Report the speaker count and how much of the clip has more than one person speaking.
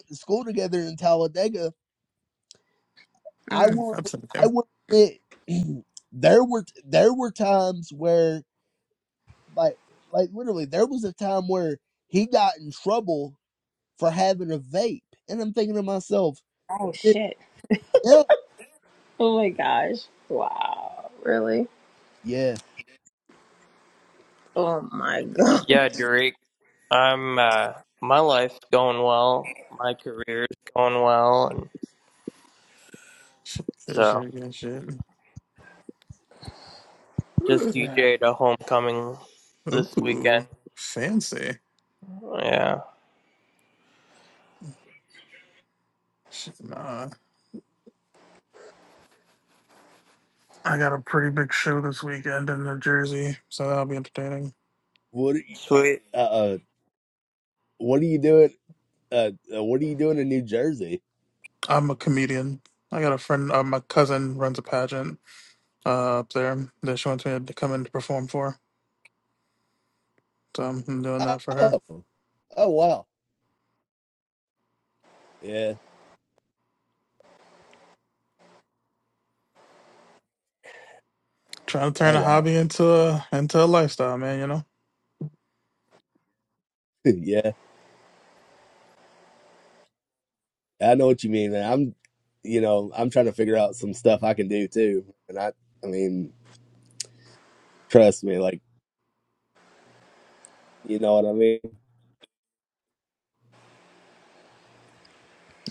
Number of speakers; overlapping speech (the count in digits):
4, about 2%